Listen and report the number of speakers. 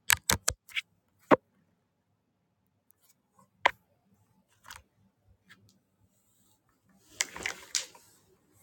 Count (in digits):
0